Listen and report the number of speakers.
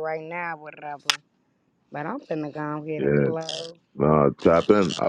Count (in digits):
2